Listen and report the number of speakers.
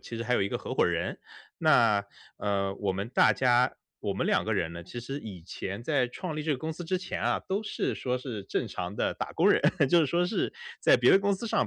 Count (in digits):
1